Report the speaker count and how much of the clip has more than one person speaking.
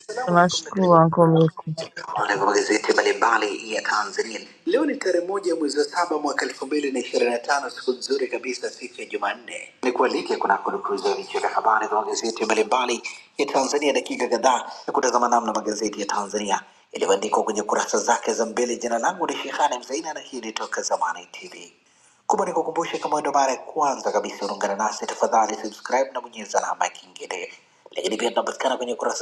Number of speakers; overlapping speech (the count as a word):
two, about 2%